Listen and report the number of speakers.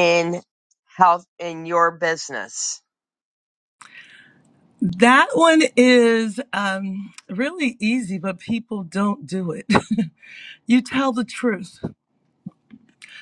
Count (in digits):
2